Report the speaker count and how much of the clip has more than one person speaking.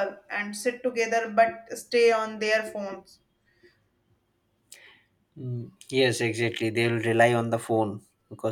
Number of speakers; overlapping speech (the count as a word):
two, no overlap